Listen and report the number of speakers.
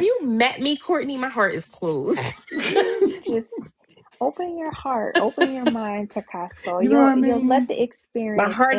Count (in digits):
3